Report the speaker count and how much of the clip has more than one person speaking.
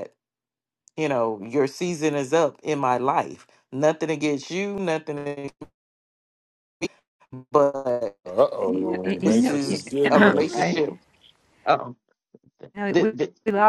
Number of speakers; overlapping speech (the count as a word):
three, about 18%